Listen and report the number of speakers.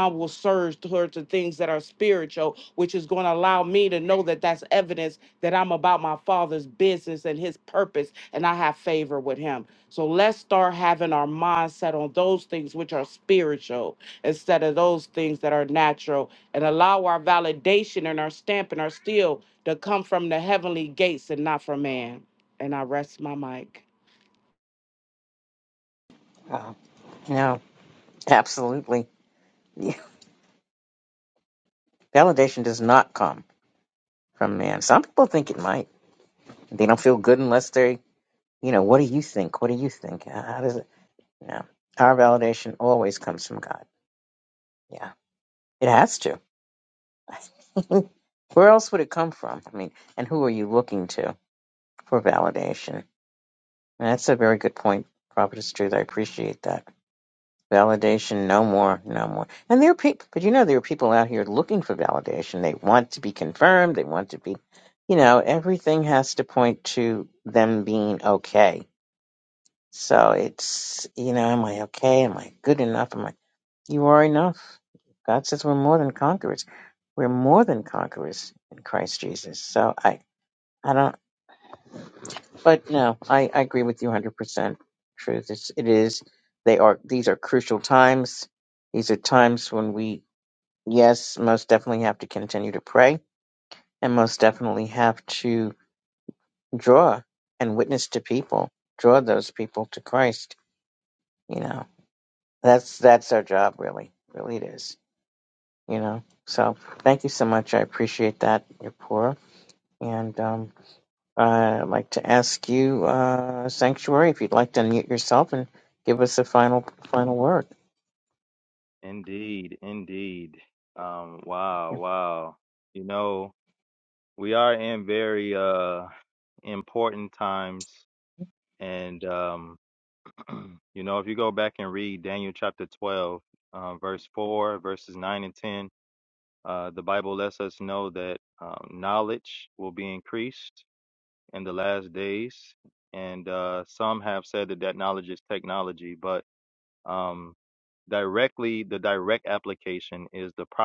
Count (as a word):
three